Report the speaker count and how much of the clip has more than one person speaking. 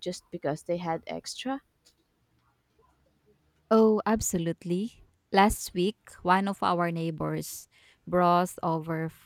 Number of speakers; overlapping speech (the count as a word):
two, no overlap